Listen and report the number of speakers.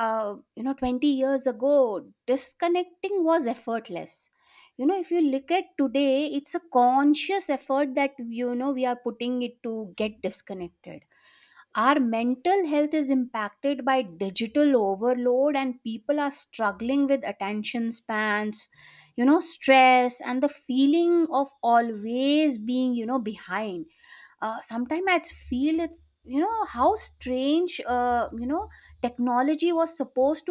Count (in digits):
1